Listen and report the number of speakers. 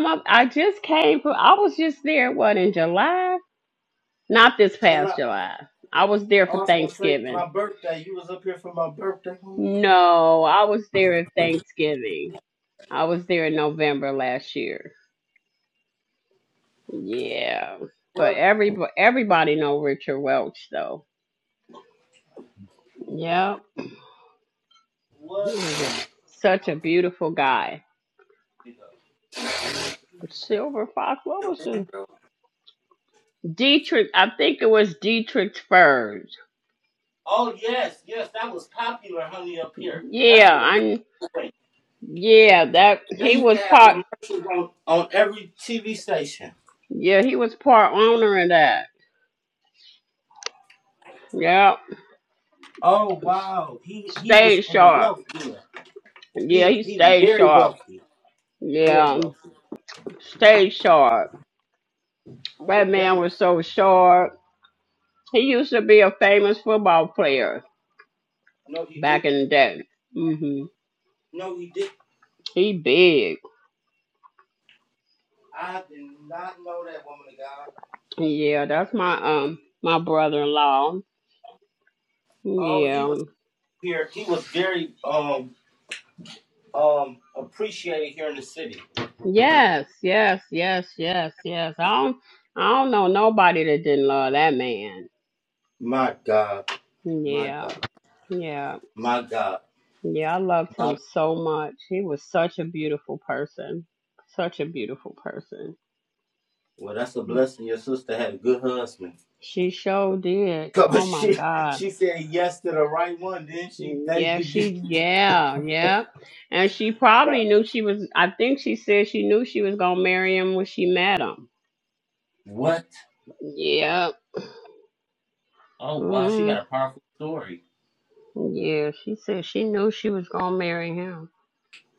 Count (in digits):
2